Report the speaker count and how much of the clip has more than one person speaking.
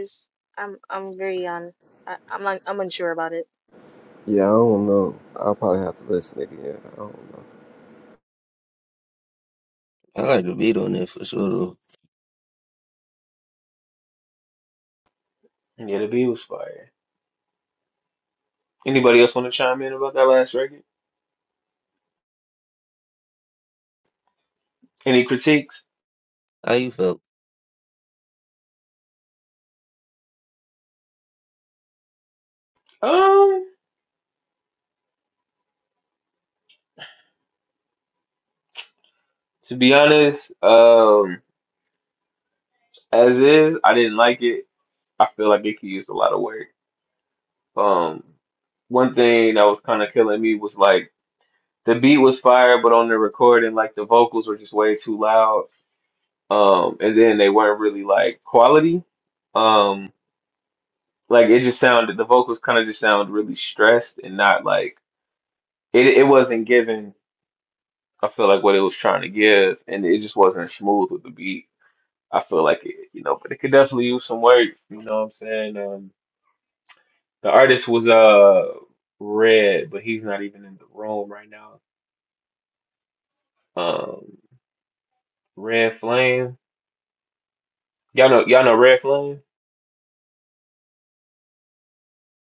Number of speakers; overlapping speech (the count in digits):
4, no overlap